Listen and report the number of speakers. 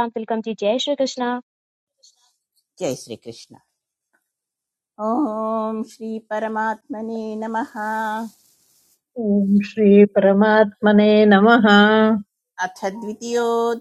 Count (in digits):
3